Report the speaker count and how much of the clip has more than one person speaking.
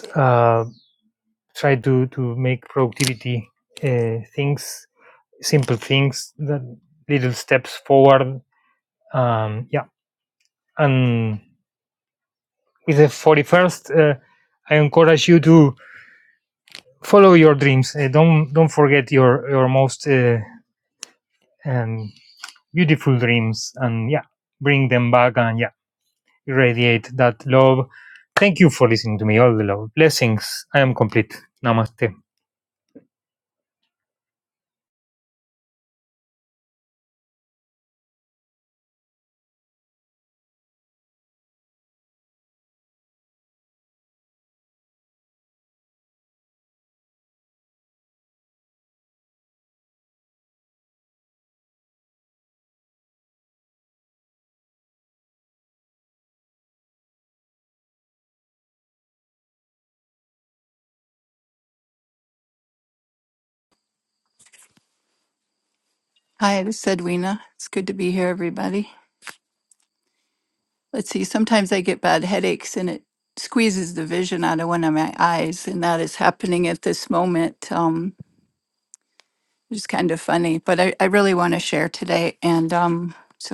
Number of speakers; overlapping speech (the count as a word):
two, no overlap